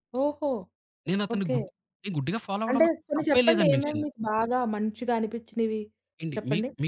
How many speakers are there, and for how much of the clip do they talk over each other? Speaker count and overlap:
2, about 30%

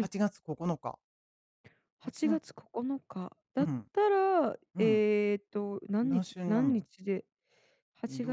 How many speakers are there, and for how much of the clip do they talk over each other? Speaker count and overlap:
2, about 23%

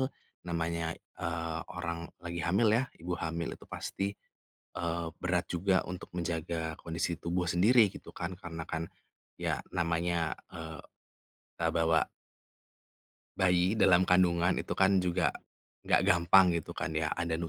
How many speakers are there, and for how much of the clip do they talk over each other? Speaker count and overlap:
1, no overlap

